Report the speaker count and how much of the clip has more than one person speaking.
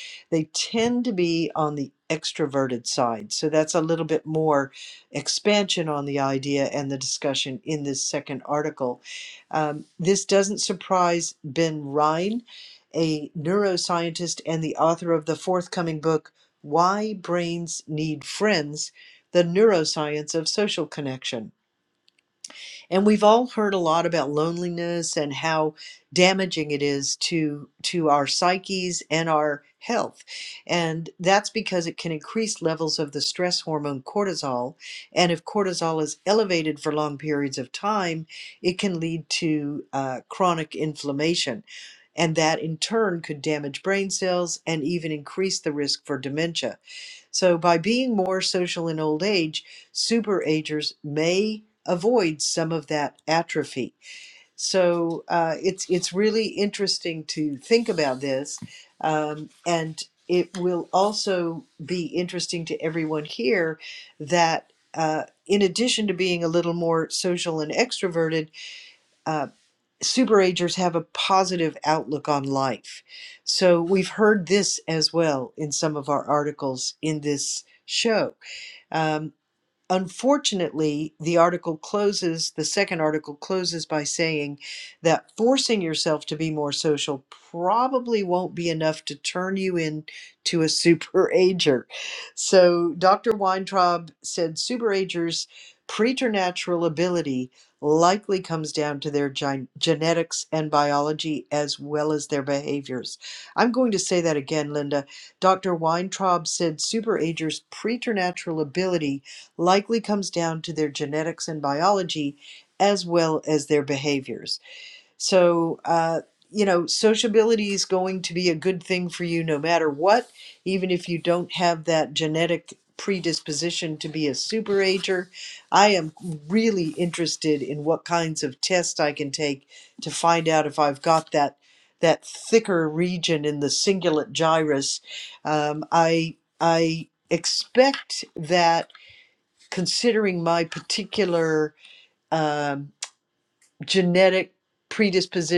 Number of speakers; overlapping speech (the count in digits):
1, no overlap